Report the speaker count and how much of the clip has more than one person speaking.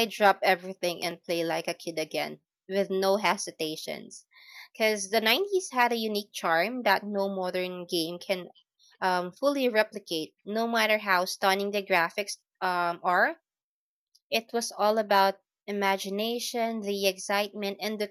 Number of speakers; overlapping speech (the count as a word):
one, no overlap